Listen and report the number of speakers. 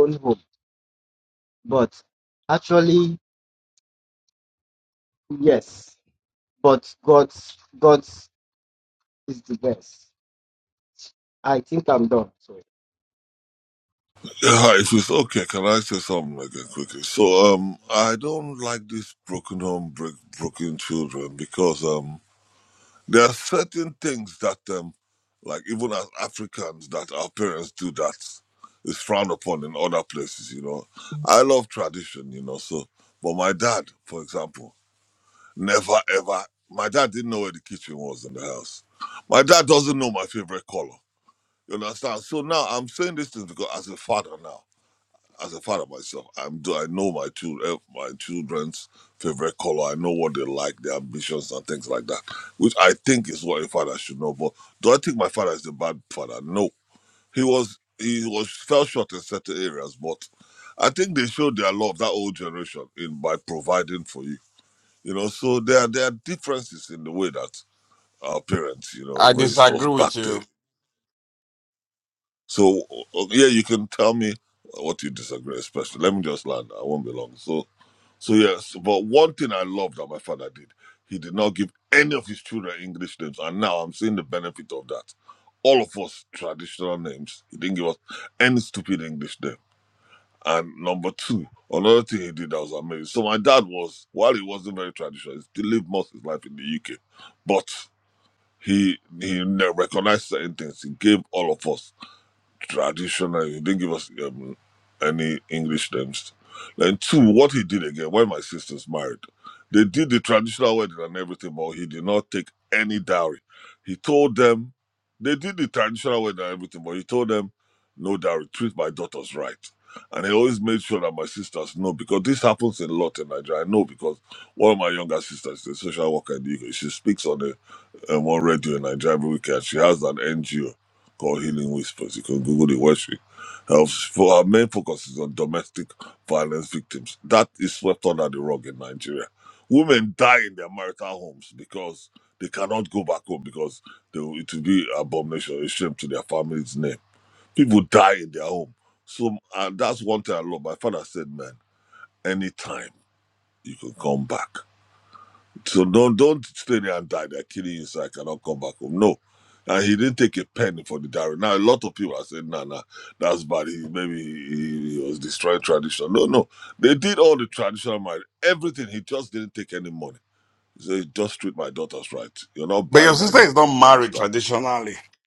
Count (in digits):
3